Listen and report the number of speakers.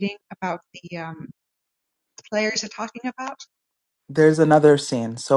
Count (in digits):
2